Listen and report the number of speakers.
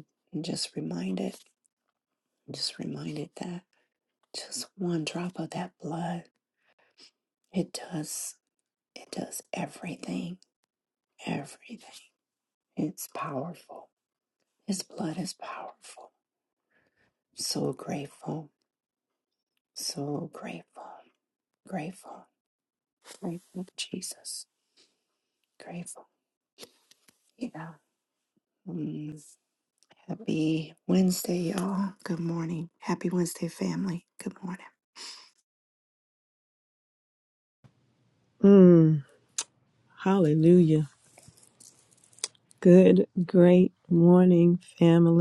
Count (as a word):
two